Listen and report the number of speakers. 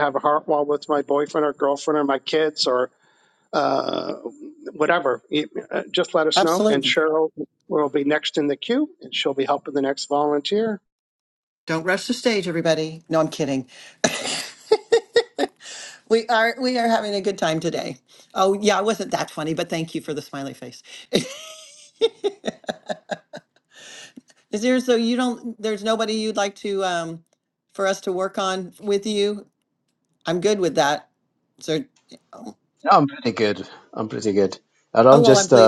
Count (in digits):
3